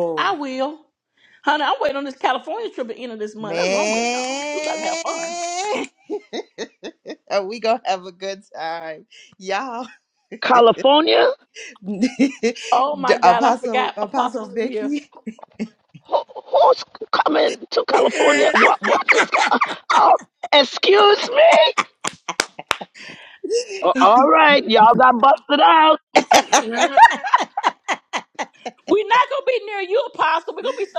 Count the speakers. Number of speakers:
3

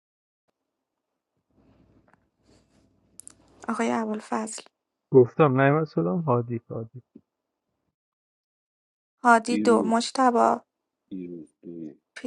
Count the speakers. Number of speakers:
3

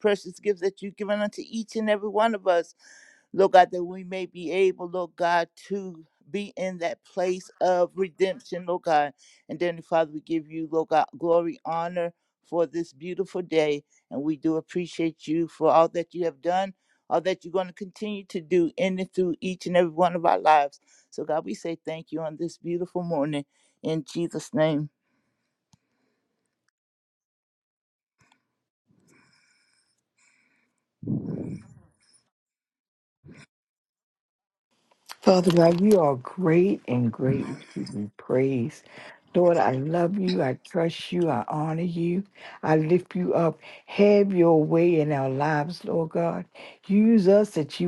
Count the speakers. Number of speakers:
2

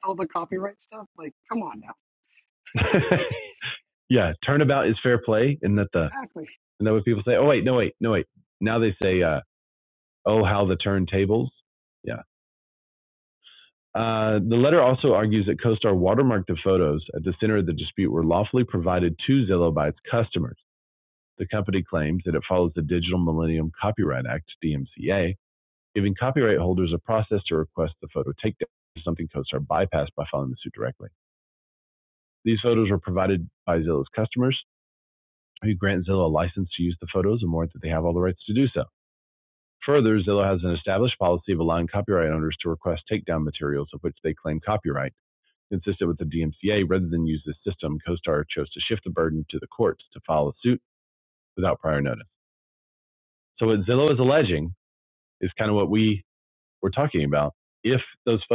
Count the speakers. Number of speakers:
2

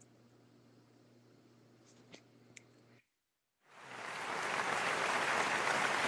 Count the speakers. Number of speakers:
0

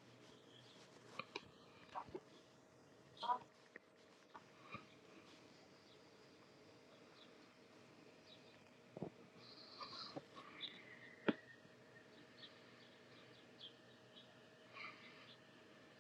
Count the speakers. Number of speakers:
0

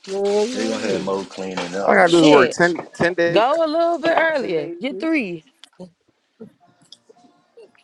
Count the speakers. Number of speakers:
3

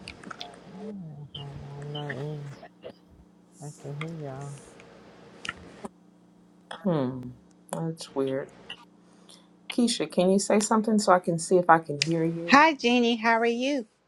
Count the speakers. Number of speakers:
3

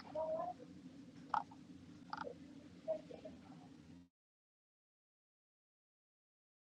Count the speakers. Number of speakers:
0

